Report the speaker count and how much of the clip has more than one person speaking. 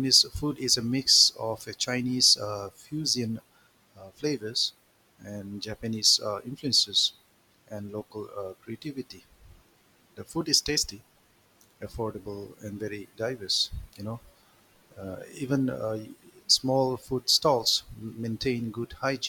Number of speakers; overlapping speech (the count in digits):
1, no overlap